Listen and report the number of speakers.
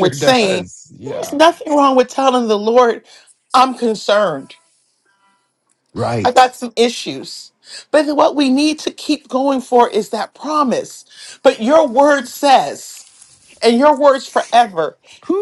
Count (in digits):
2